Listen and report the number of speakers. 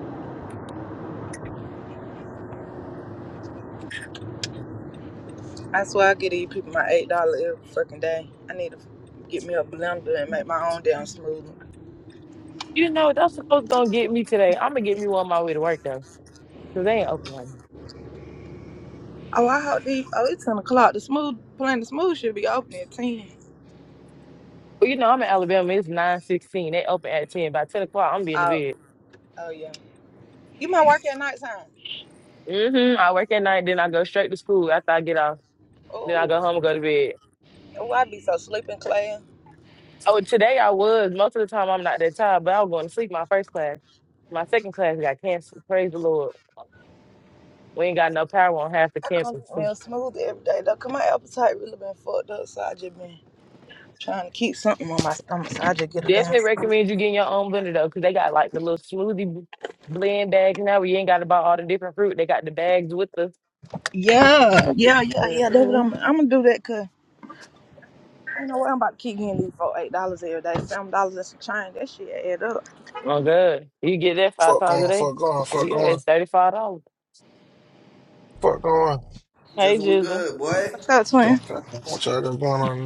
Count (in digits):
4